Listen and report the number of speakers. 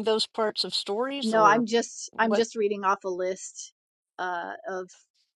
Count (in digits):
2